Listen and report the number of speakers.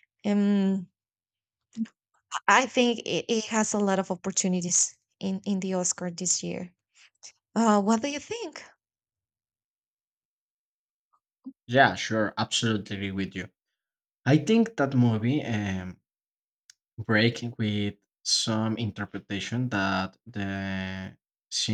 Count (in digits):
2